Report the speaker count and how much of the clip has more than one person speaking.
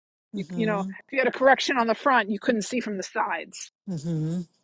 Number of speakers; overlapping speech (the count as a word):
two, about 12%